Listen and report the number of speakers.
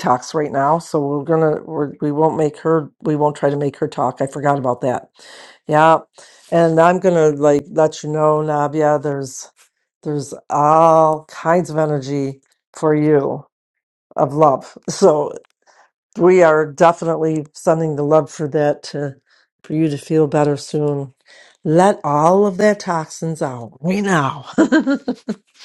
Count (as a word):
one